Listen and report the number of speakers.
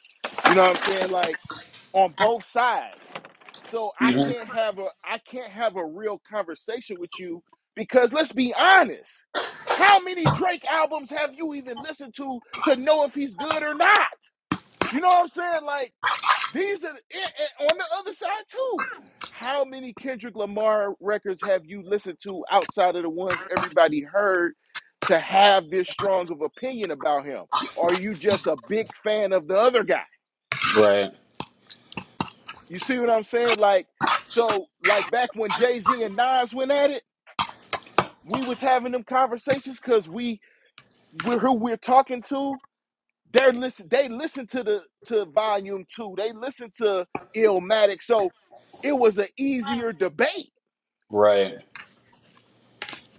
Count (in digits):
2